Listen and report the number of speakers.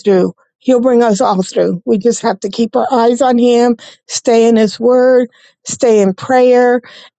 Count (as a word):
one